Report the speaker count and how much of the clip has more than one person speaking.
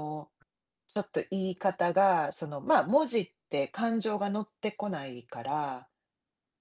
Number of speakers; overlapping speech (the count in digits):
1, no overlap